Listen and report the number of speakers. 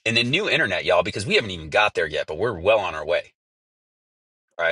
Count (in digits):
1